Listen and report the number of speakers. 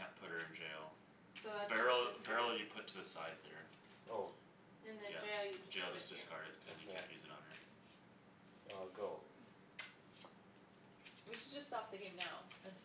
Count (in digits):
4